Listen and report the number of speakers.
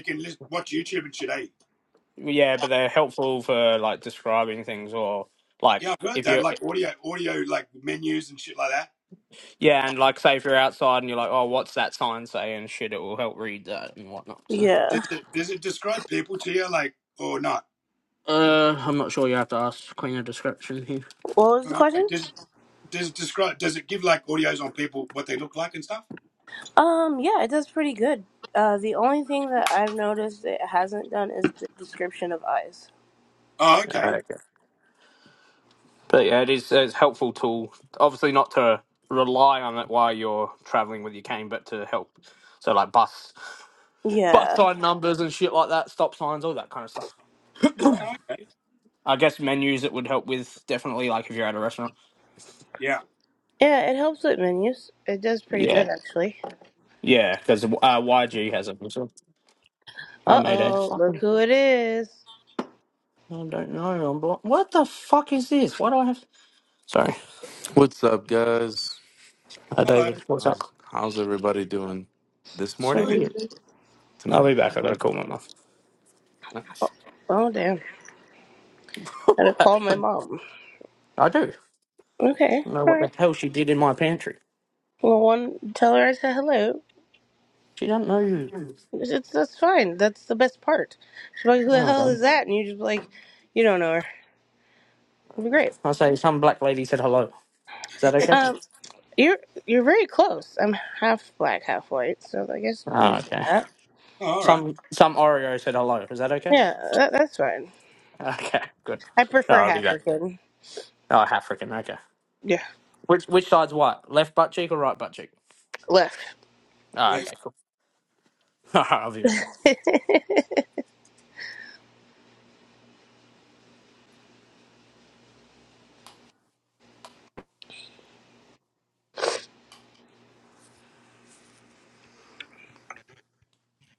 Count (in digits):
4